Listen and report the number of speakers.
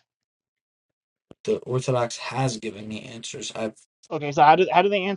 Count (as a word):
two